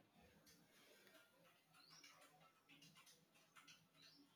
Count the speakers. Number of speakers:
0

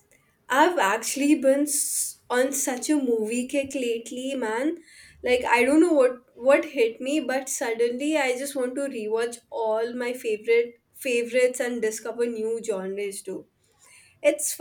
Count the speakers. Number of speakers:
1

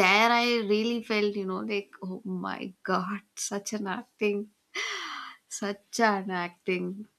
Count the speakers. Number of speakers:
1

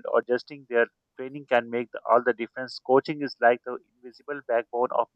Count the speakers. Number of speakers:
1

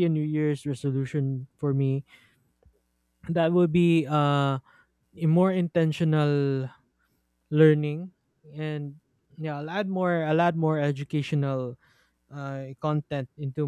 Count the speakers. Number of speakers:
1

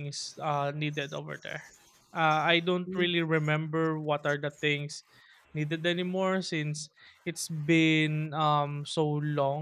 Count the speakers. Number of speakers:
1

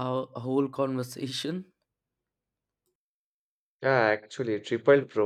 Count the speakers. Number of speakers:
2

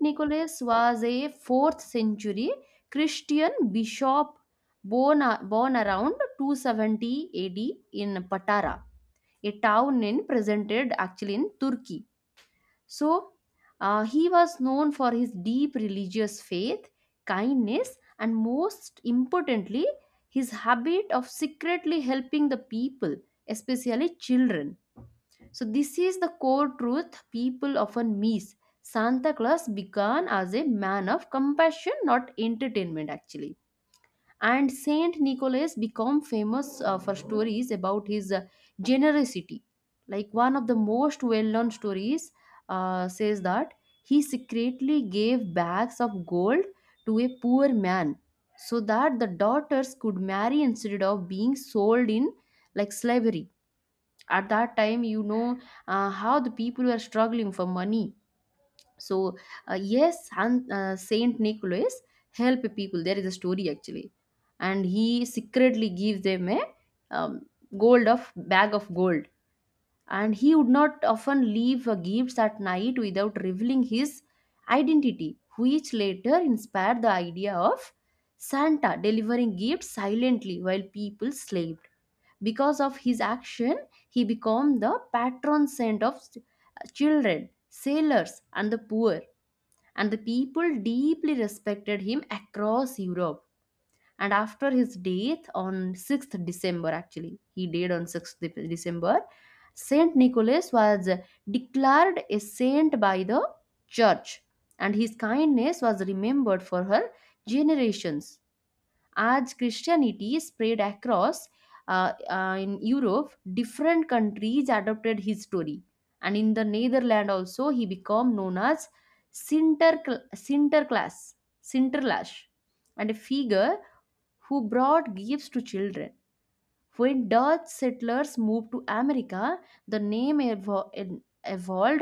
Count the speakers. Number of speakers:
1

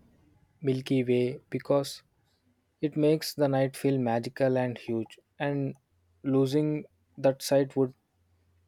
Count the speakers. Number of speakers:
1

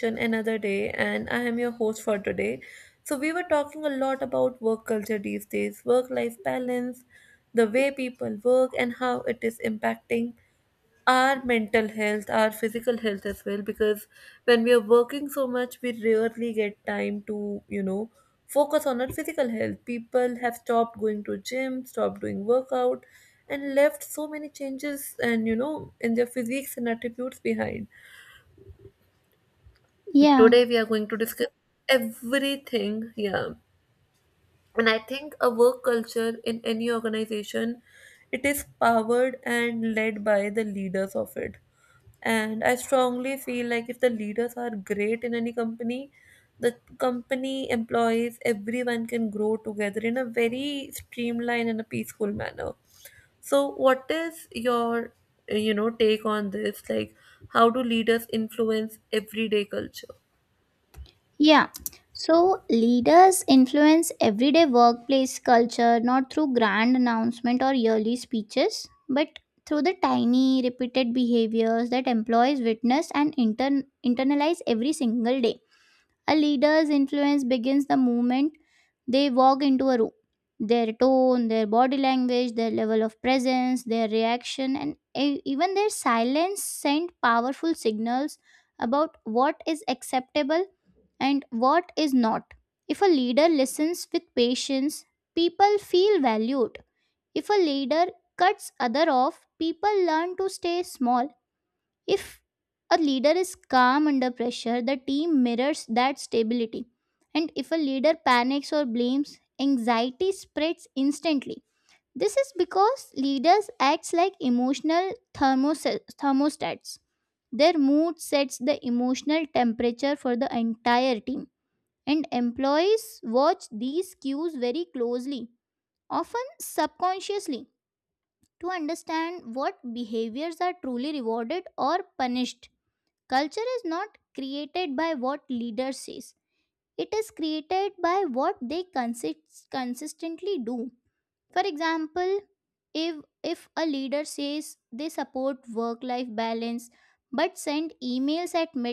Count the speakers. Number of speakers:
2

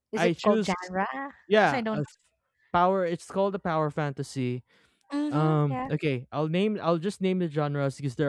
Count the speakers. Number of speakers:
2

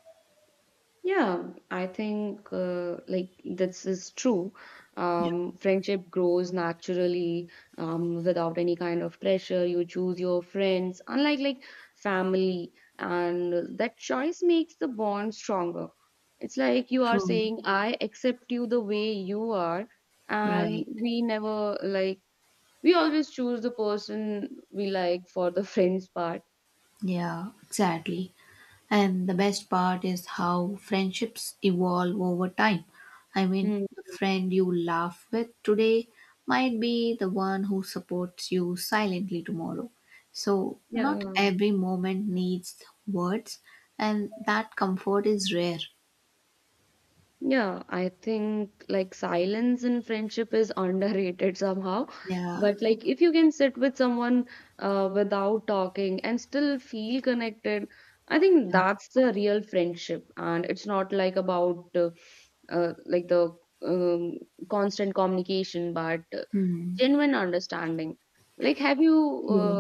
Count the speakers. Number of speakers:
2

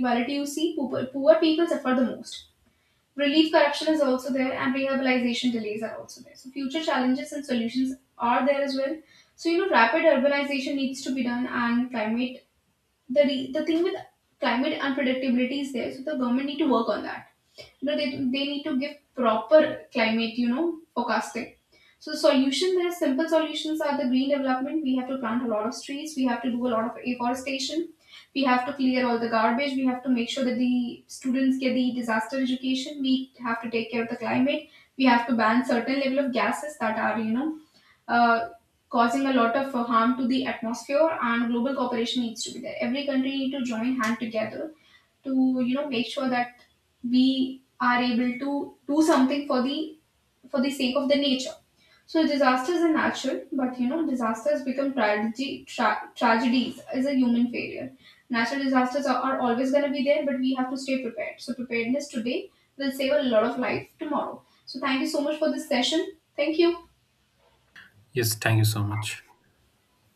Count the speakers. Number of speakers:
2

